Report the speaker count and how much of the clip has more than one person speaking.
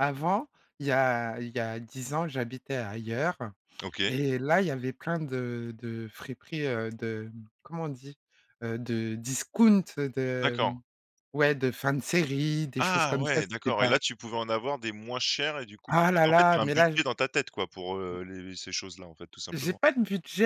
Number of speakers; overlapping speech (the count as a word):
two, about 15%